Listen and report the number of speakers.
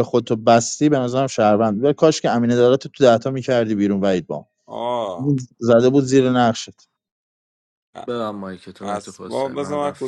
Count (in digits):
3